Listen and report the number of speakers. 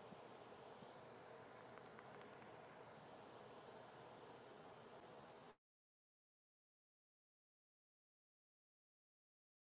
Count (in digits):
0